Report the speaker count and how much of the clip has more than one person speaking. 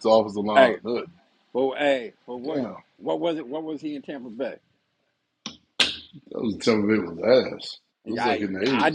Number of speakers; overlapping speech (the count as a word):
two, about 15%